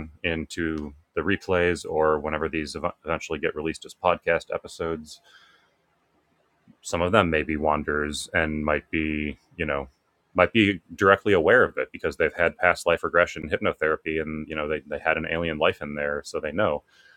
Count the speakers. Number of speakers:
1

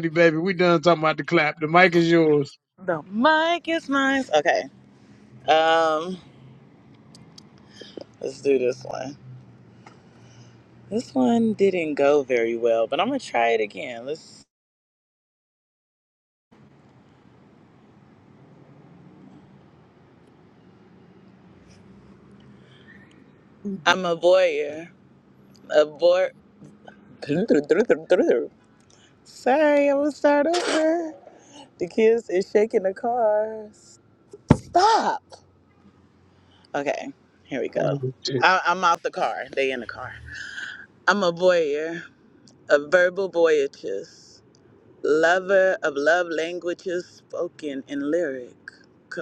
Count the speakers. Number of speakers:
2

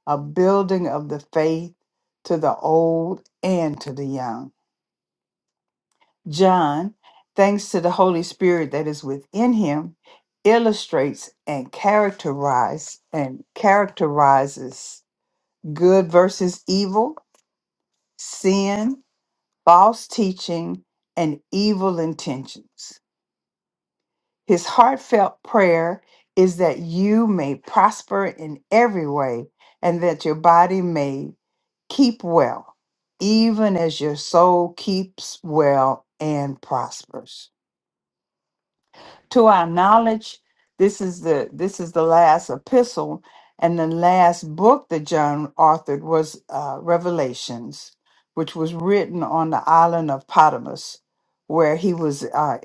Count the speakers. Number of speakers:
1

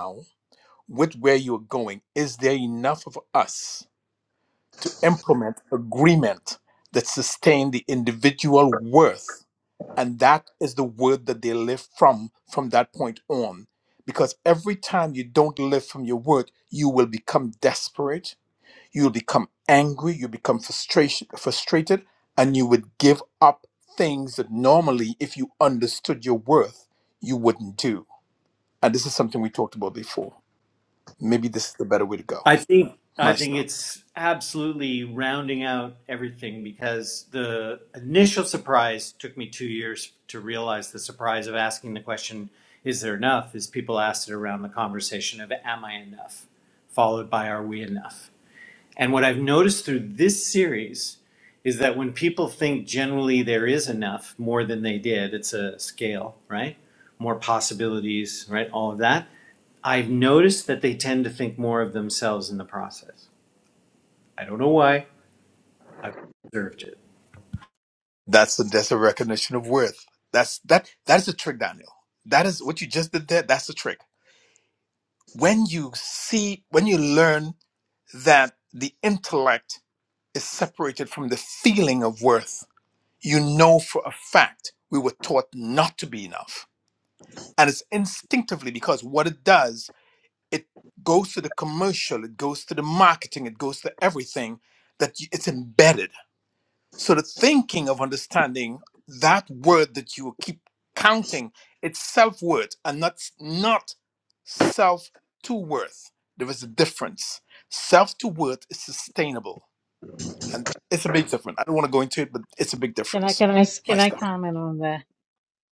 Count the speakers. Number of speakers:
3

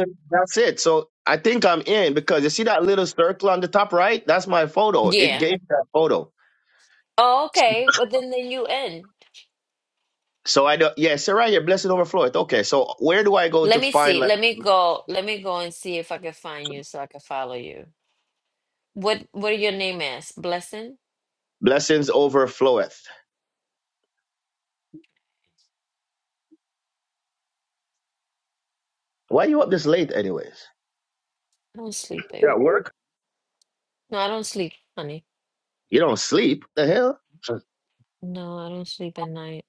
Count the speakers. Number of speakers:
2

